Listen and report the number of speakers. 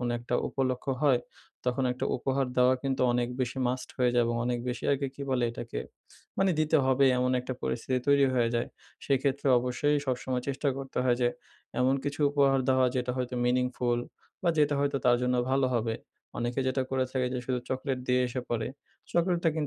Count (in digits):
1